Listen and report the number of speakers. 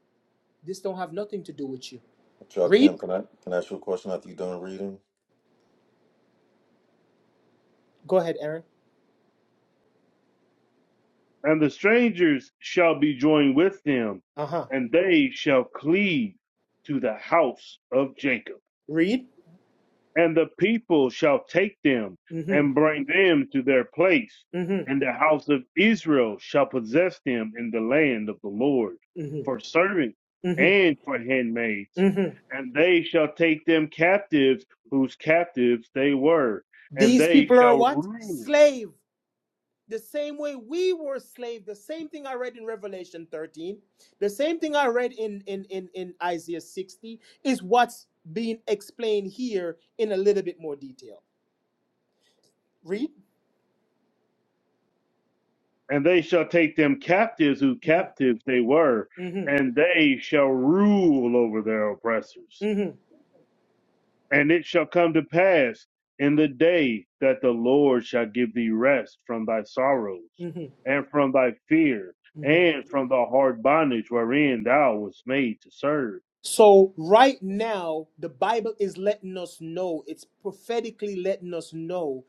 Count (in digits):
3